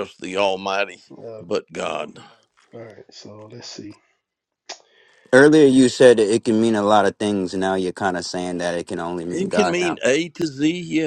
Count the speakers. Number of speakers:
3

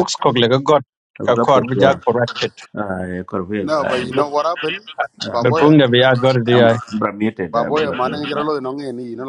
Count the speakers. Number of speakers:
3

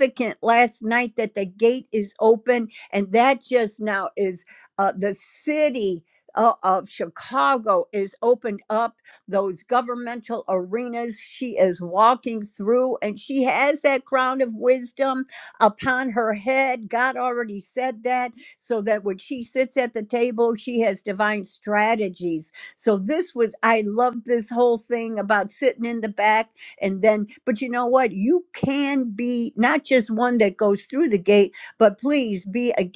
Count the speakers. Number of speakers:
1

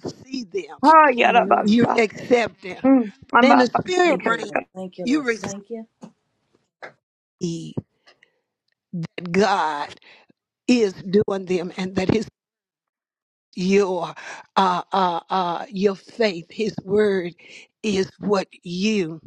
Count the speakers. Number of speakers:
3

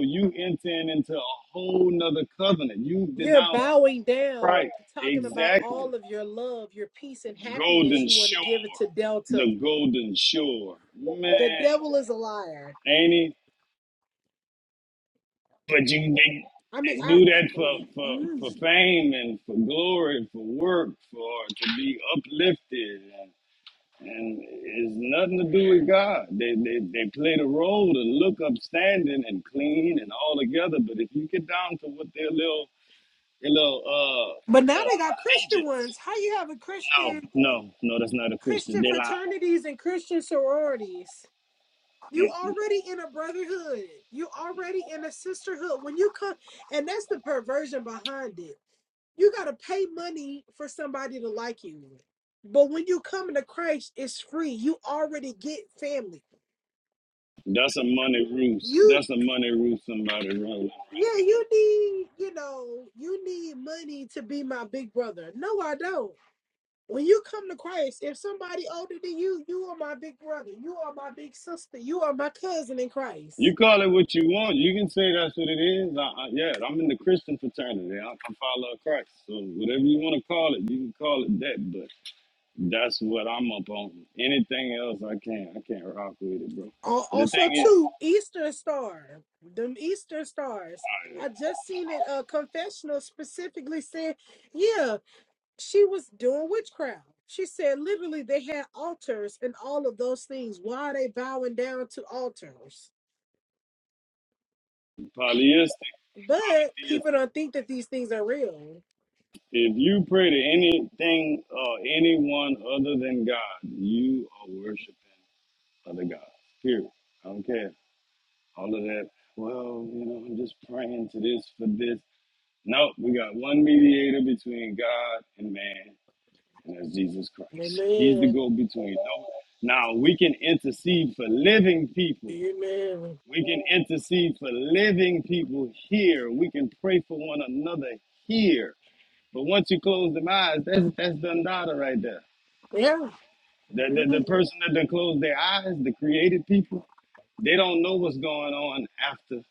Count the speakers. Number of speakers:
2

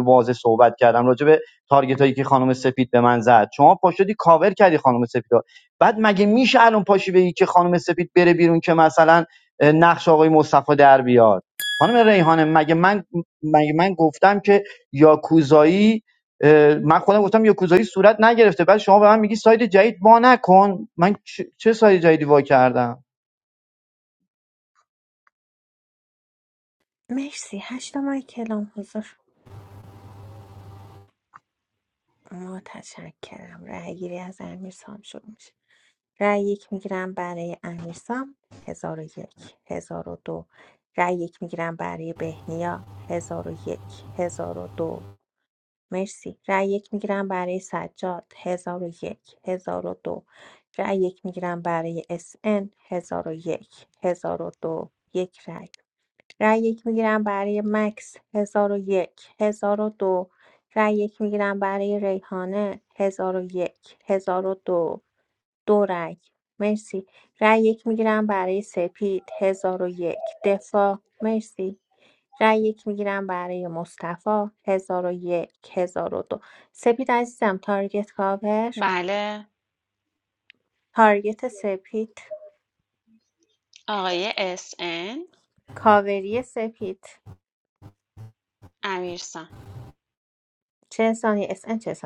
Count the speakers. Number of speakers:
3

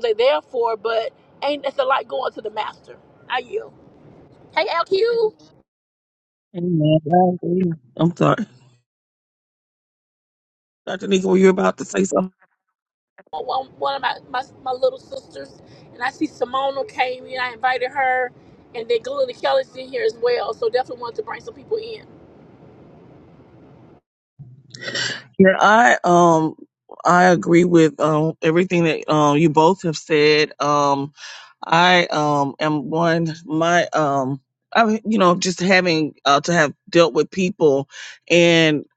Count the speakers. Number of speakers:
2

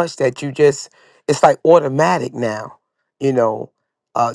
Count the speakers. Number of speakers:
1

